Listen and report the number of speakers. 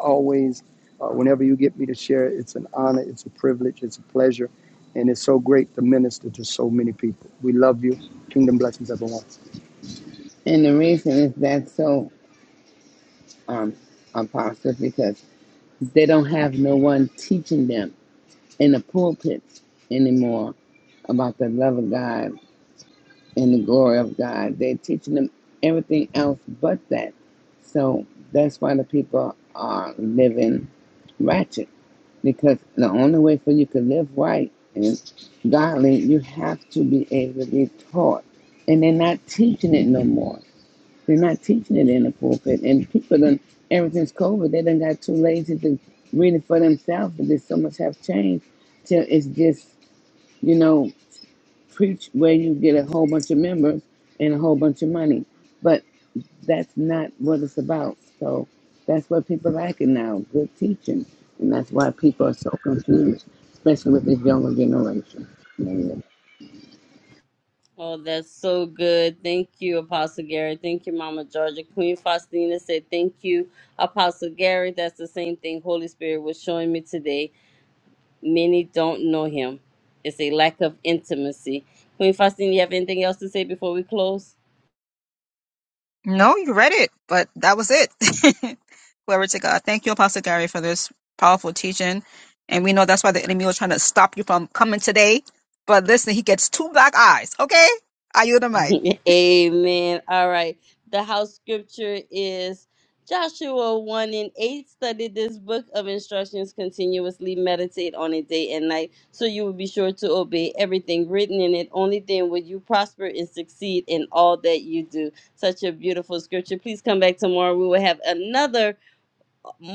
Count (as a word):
four